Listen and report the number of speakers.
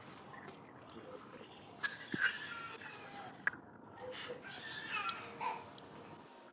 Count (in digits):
0